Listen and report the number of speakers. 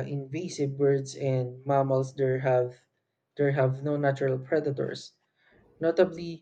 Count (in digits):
1